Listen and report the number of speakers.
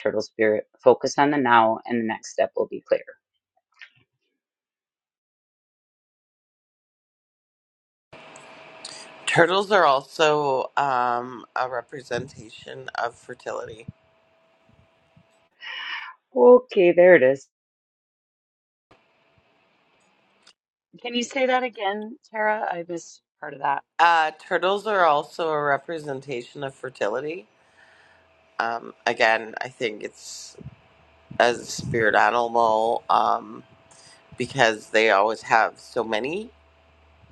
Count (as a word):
three